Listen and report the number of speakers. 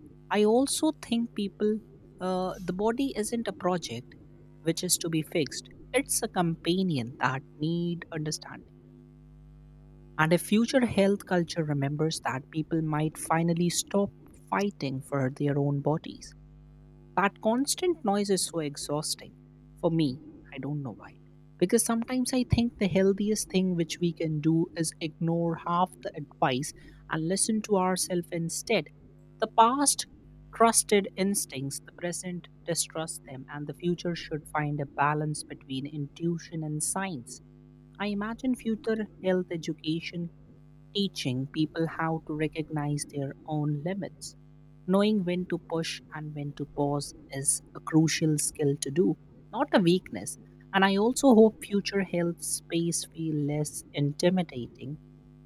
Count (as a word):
one